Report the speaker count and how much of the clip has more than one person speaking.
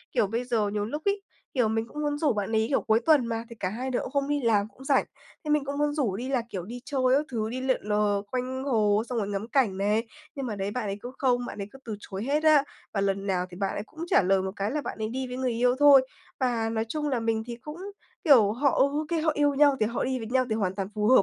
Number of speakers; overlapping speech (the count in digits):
1, no overlap